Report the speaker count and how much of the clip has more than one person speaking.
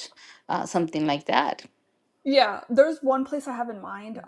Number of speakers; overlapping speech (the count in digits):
2, no overlap